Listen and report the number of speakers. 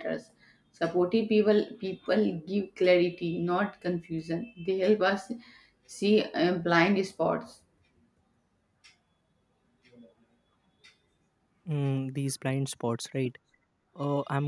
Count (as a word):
two